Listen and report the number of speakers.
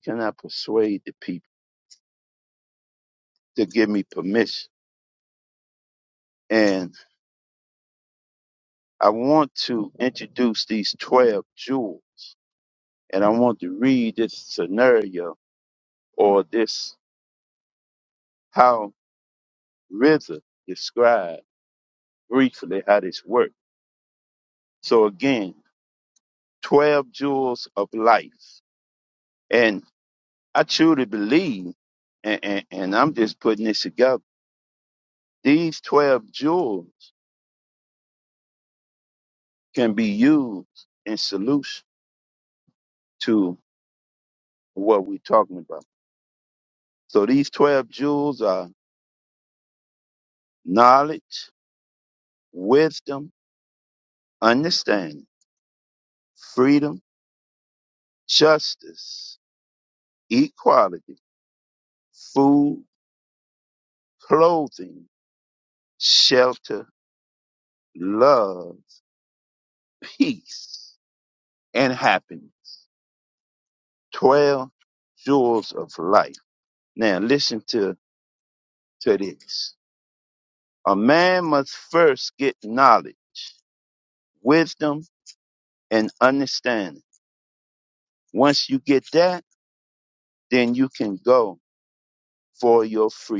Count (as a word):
one